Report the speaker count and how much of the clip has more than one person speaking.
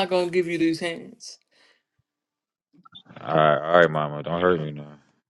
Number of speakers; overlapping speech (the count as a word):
two, no overlap